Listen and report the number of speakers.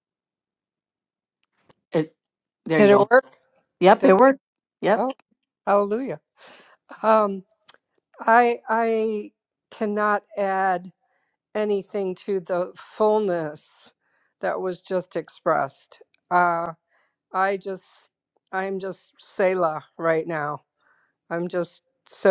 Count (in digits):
2